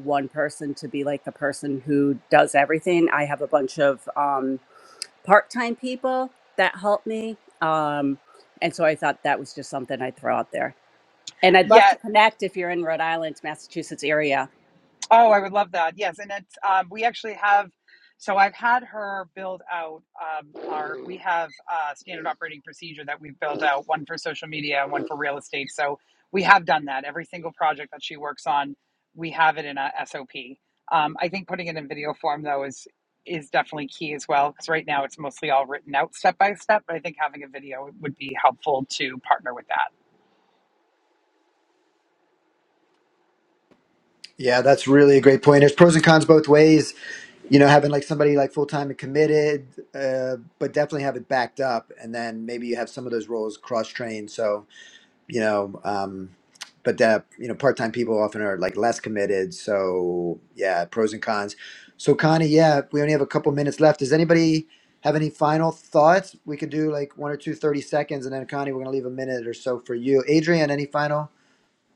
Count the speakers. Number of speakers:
3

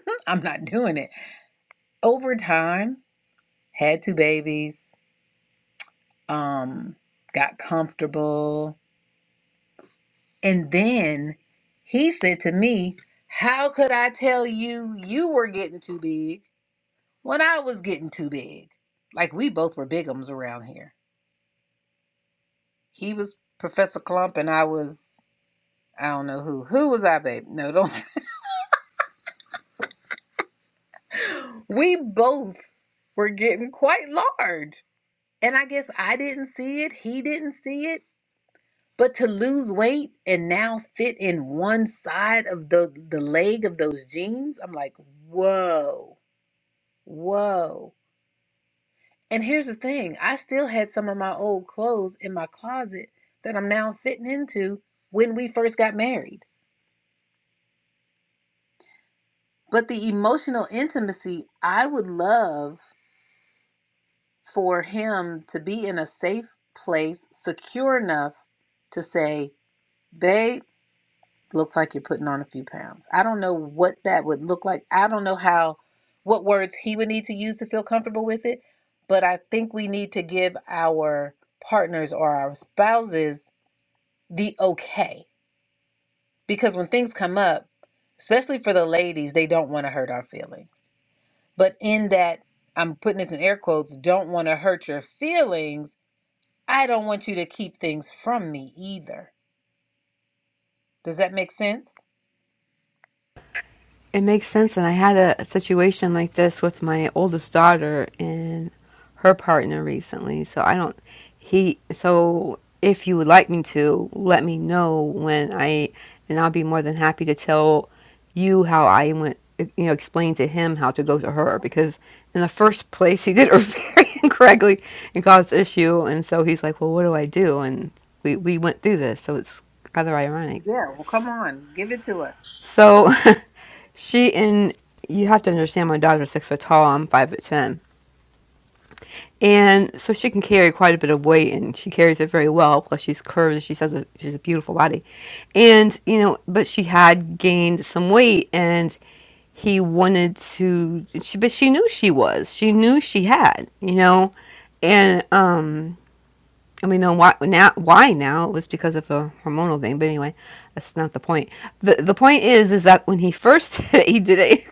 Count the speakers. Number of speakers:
2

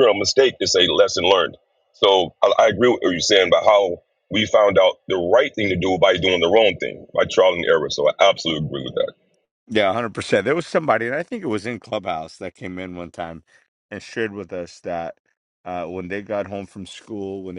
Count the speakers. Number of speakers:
2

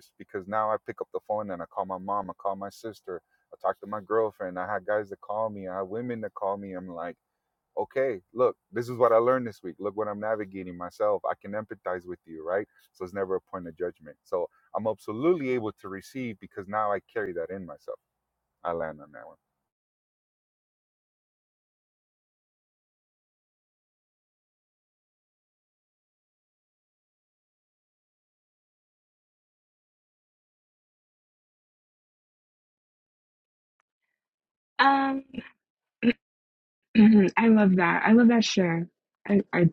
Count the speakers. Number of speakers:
2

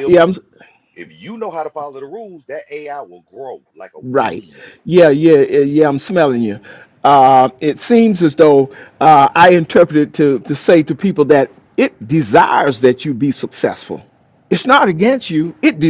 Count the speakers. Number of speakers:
2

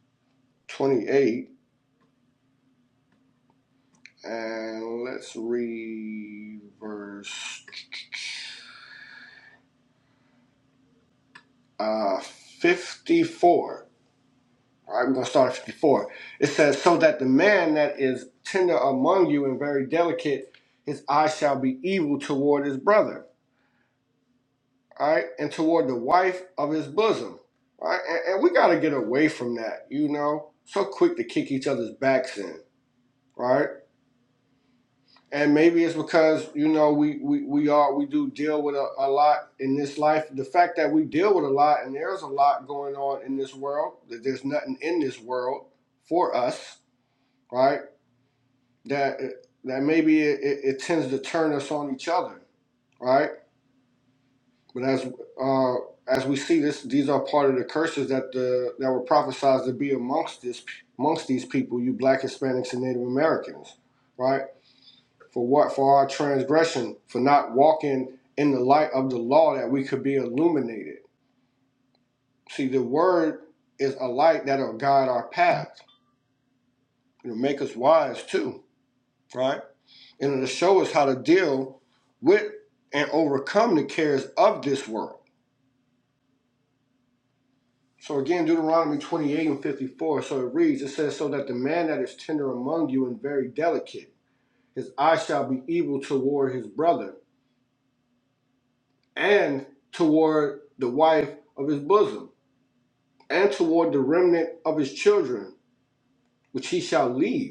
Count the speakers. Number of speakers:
1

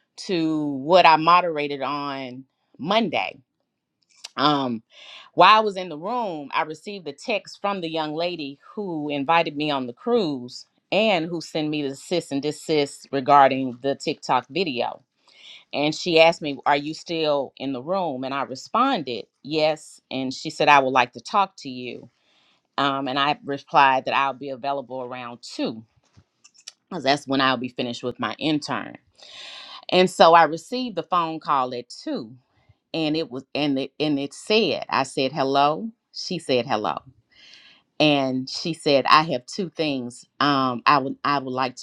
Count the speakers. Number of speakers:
1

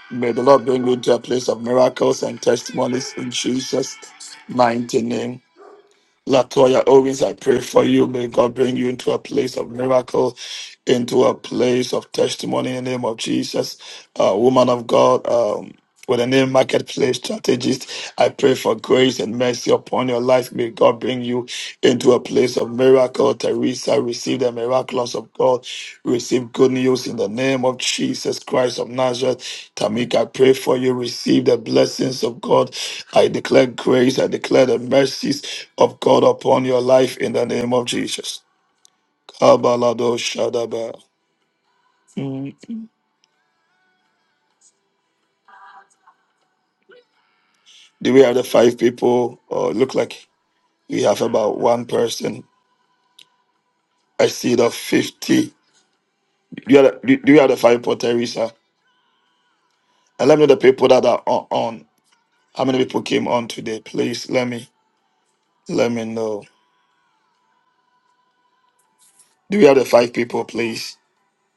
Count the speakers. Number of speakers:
1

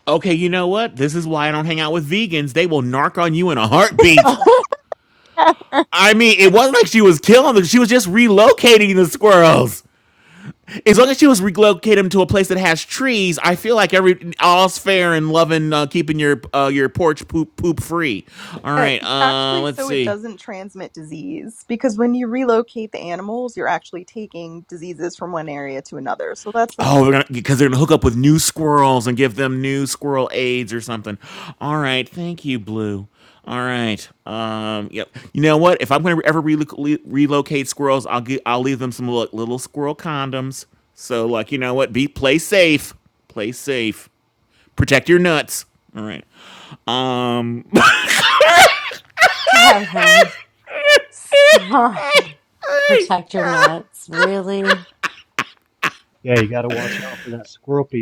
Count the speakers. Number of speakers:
4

